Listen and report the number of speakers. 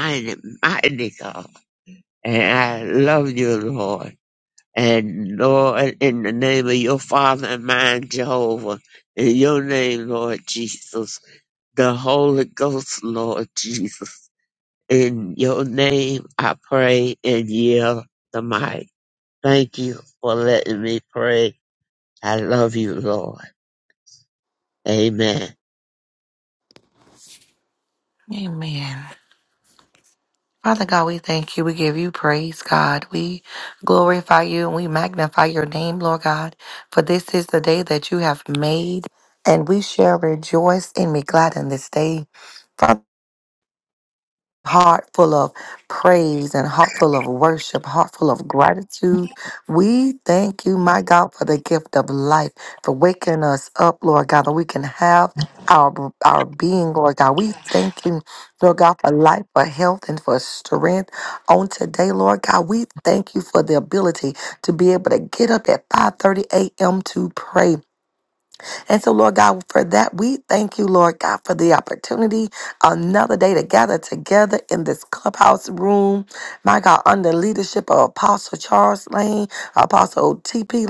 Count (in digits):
2